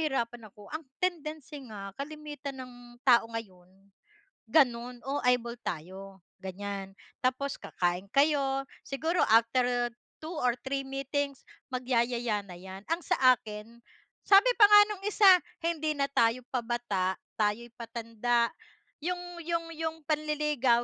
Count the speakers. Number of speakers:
one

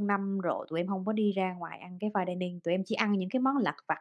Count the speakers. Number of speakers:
one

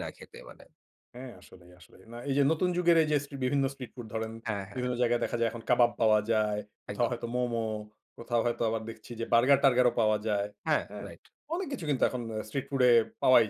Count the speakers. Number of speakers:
two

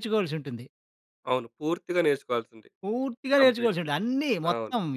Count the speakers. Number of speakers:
two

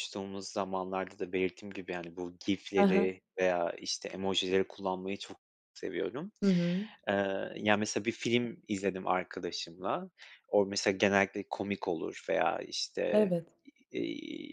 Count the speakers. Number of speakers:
two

